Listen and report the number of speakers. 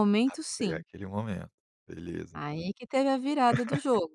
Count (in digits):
2